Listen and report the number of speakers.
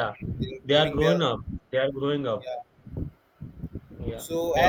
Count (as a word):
two